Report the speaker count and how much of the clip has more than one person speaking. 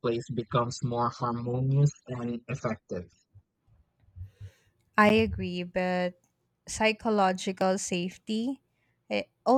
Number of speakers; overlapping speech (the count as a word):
two, no overlap